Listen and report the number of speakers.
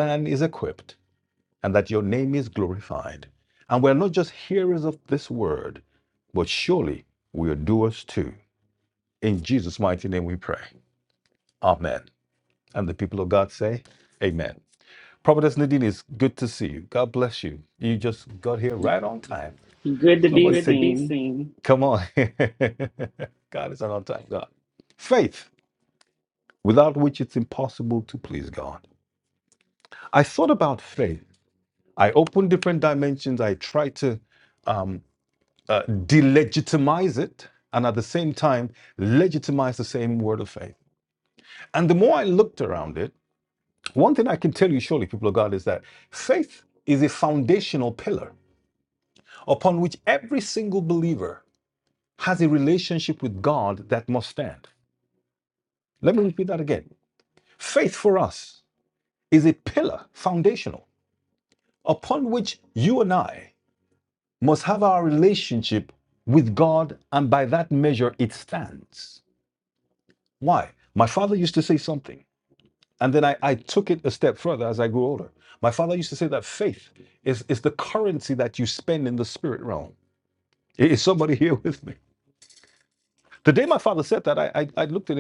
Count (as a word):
two